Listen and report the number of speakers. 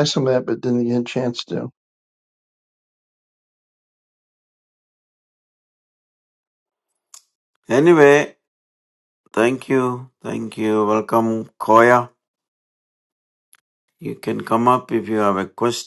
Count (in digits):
2